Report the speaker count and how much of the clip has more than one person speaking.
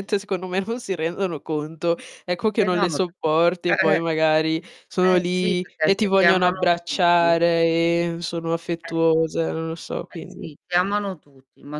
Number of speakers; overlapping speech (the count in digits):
2, about 30%